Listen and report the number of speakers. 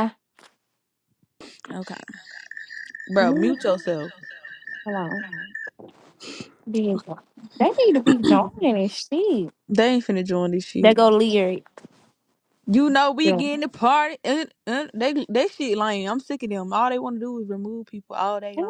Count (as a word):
two